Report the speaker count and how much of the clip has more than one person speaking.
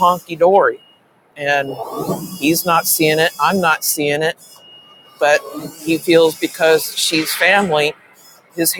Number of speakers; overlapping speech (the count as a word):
one, no overlap